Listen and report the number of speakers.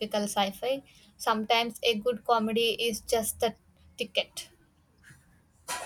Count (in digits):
1